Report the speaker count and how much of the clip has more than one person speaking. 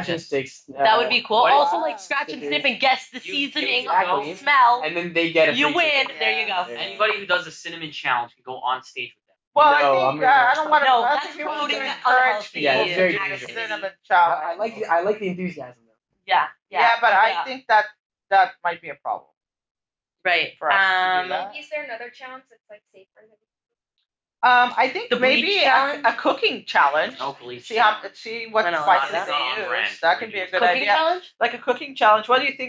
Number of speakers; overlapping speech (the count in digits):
5, about 52%